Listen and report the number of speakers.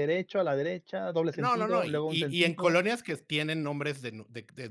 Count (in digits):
2